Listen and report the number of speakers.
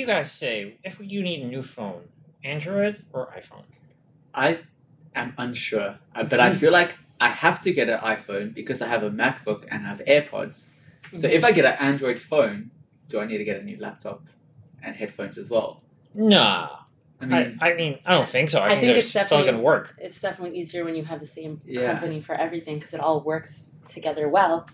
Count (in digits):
3